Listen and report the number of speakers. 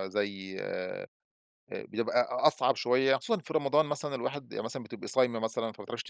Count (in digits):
1